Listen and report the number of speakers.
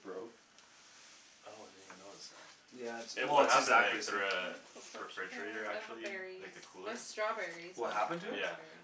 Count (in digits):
3